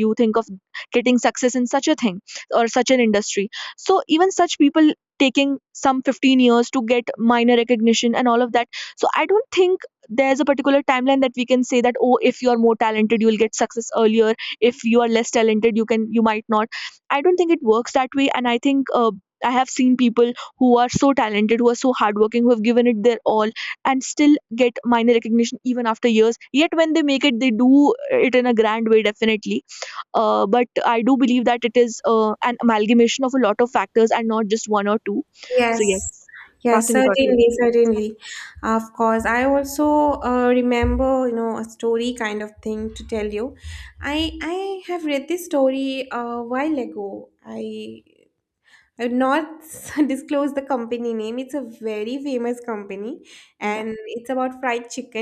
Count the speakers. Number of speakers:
2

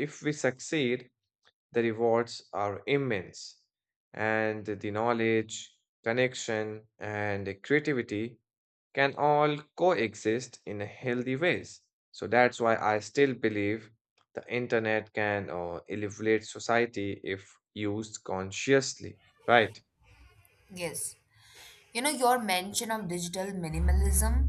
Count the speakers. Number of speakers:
2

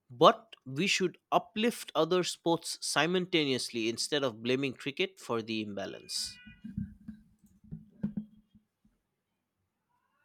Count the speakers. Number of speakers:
1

